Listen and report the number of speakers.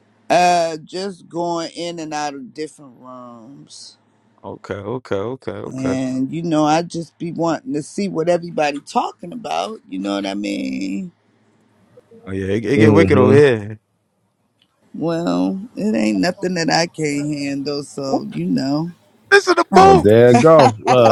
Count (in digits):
3